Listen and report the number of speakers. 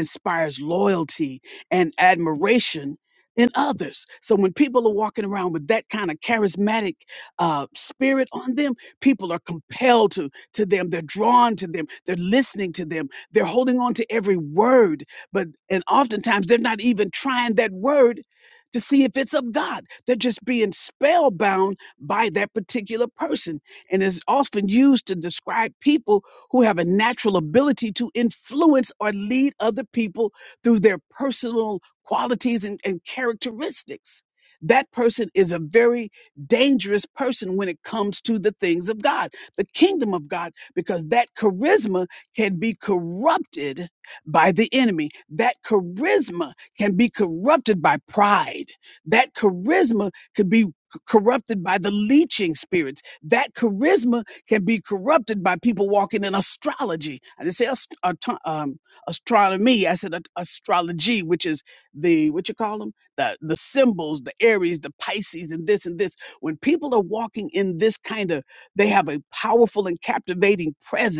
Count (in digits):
1